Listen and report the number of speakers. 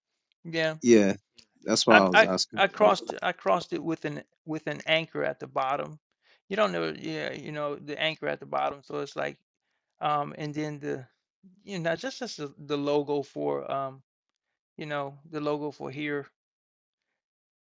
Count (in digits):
2